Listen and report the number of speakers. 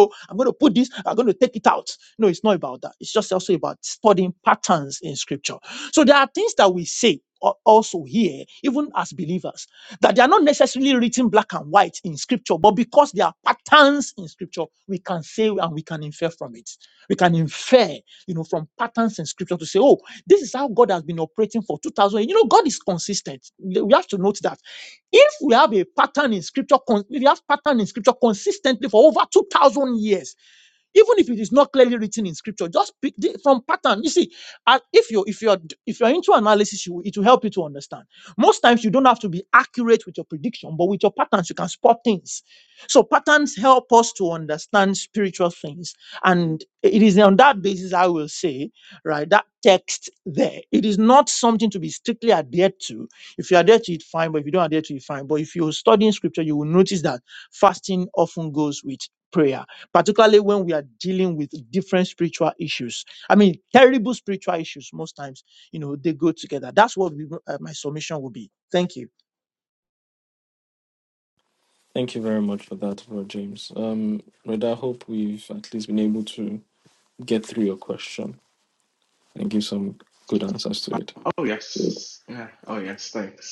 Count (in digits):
3